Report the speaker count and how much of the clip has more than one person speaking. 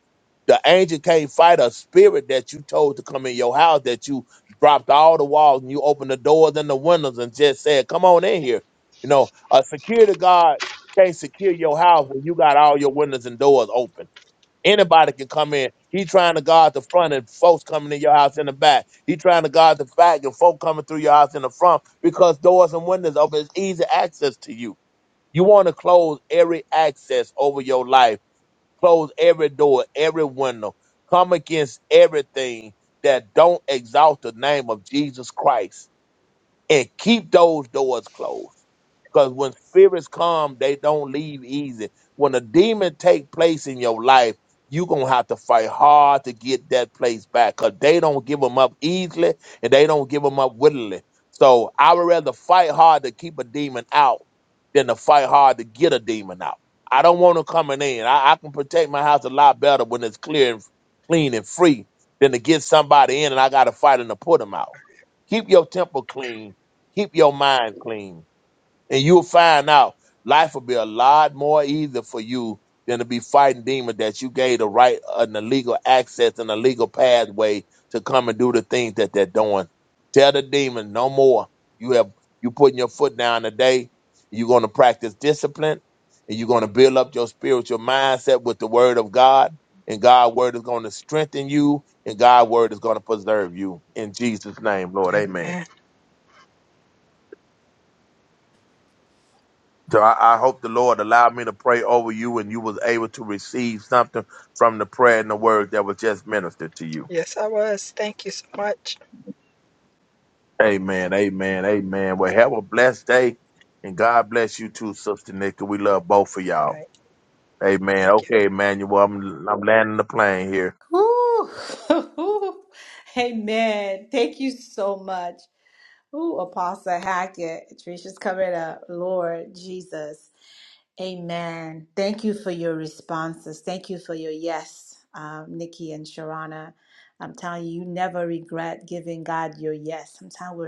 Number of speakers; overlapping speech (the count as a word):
three, about 1%